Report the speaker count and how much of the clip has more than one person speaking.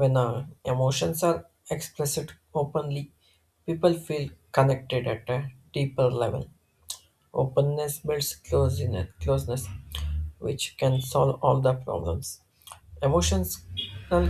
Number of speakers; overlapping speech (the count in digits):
1, no overlap